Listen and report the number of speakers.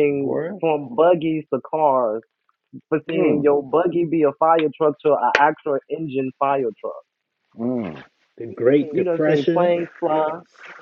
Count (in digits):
3